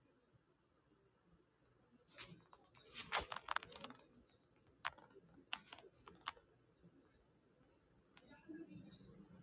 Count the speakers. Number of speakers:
0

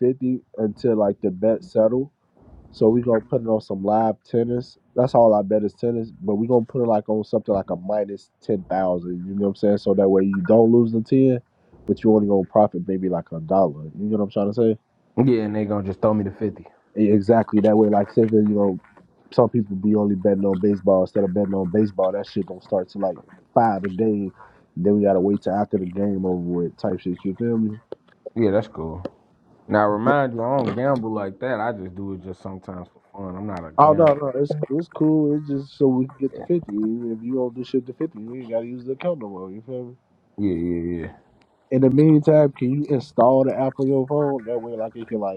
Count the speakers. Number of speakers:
2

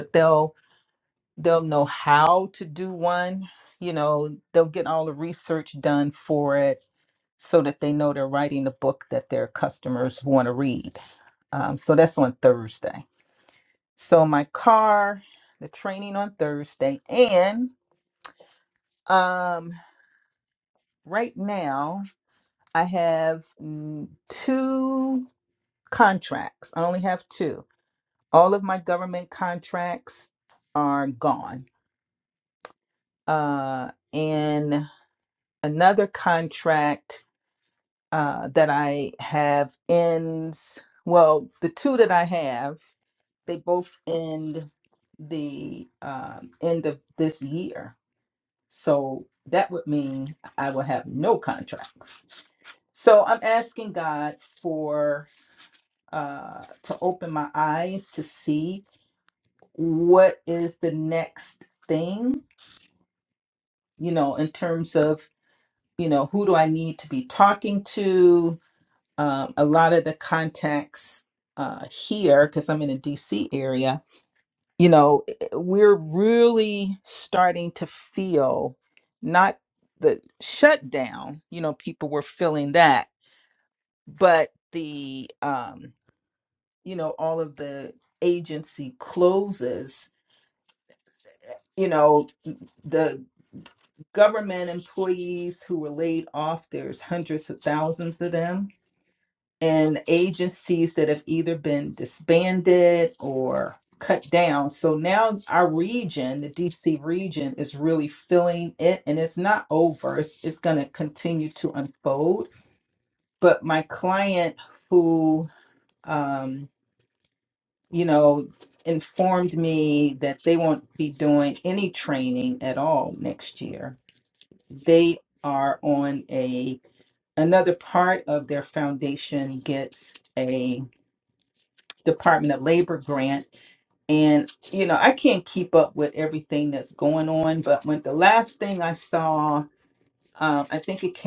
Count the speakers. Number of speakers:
1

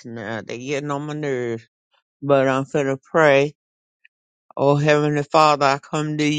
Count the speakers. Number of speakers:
1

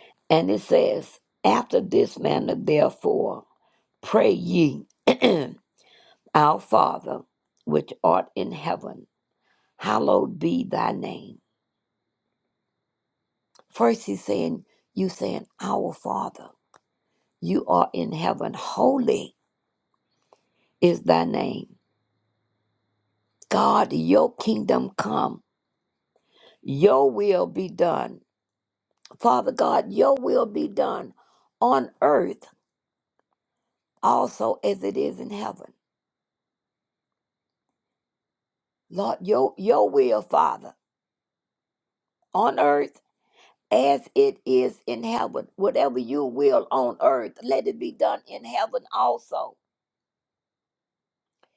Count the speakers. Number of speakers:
1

